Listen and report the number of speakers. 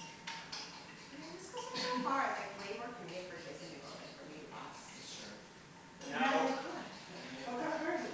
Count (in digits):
3